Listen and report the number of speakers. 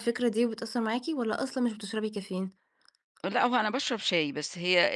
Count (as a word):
two